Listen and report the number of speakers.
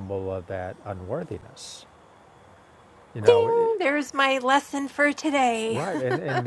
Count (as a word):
two